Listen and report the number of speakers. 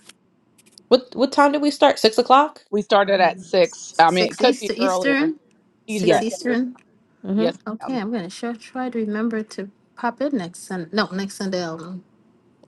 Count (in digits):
3